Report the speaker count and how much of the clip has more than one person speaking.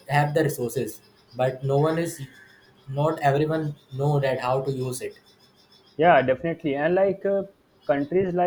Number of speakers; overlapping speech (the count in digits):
2, no overlap